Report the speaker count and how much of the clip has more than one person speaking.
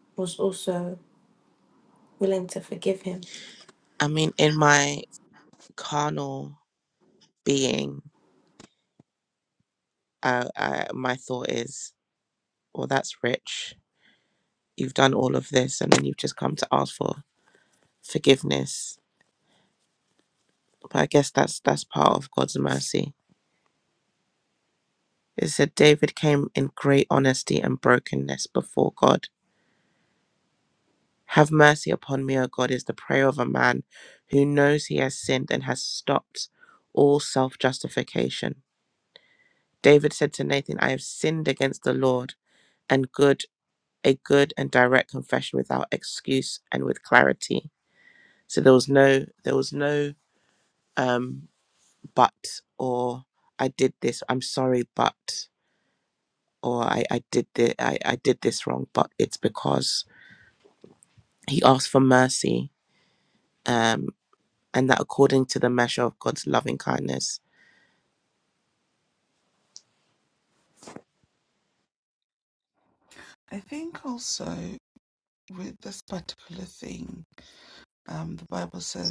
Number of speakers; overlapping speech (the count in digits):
3, no overlap